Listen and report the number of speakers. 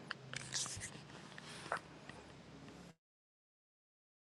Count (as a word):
zero